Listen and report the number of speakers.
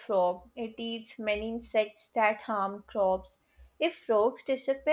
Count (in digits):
1